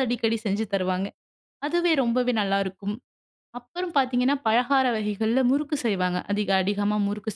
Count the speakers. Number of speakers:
1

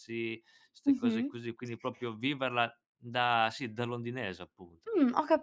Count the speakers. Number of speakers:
2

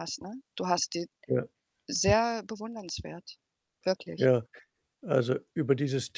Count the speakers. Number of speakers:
2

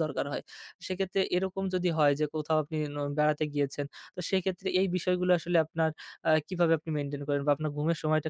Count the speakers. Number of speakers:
1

